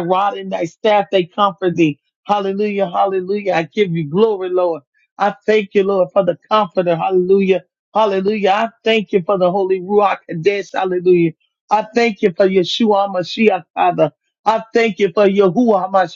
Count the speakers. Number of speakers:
one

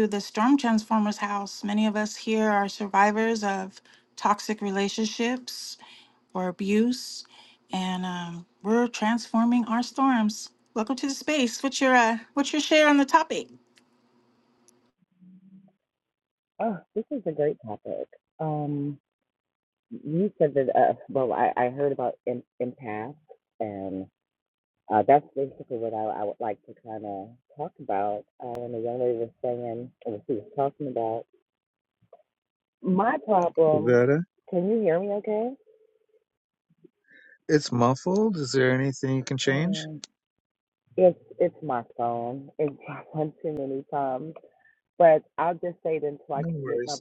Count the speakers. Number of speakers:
three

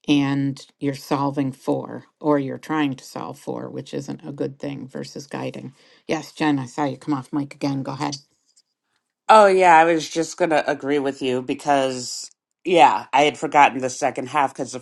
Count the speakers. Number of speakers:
two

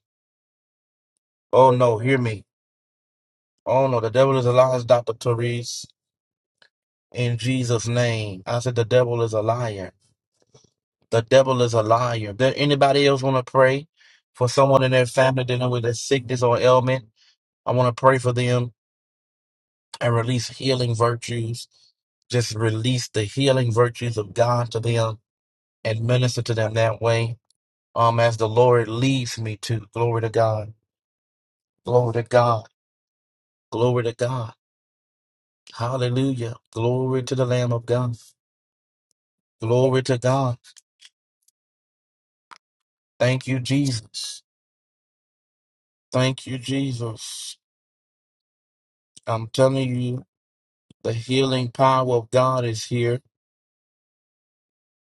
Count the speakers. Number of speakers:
one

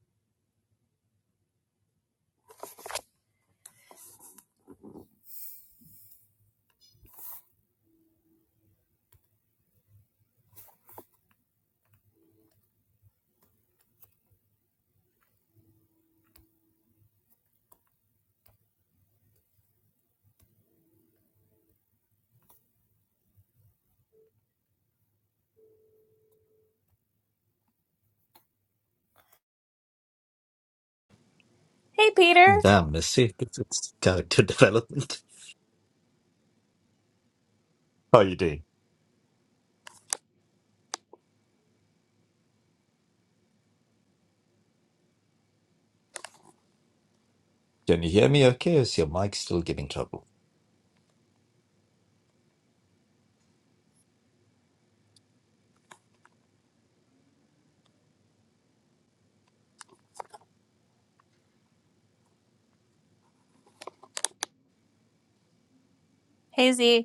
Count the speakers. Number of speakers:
two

